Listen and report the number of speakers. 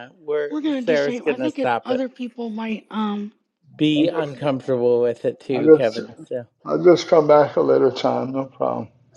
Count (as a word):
three